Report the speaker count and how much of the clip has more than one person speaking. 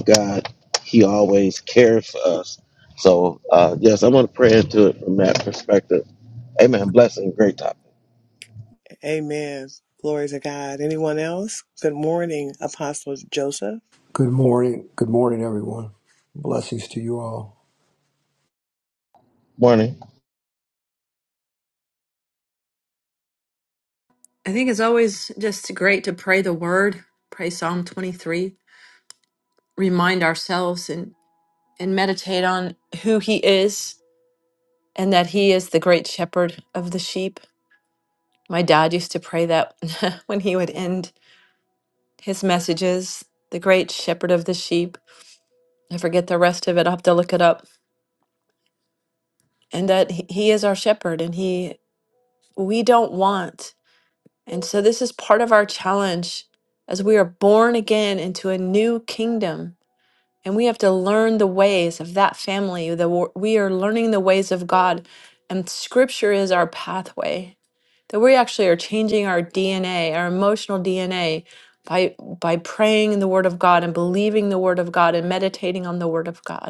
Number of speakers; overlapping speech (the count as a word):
four, no overlap